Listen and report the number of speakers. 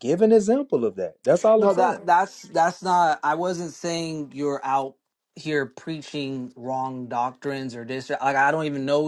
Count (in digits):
2